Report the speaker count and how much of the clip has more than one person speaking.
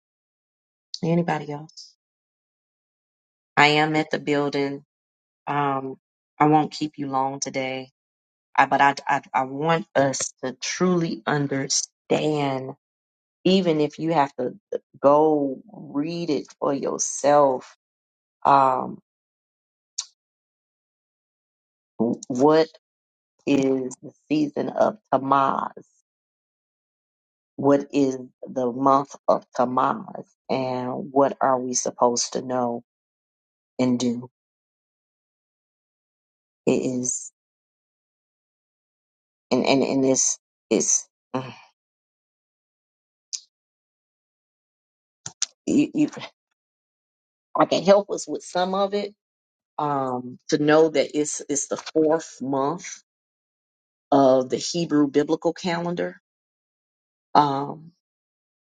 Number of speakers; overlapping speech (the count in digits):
1, no overlap